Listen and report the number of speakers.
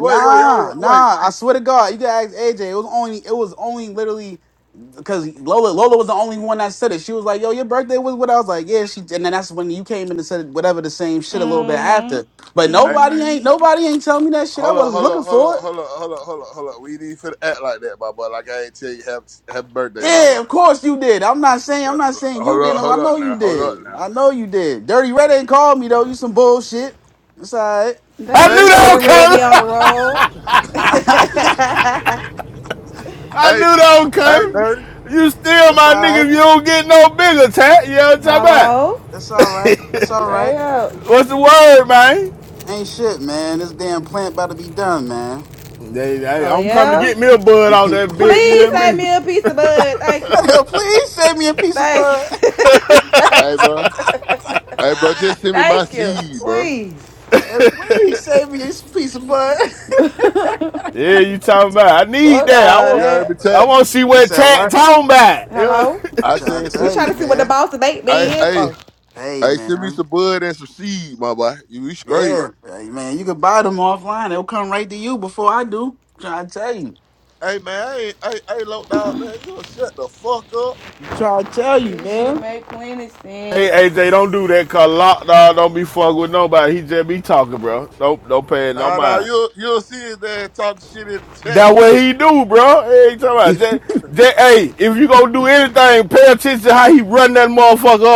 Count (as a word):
four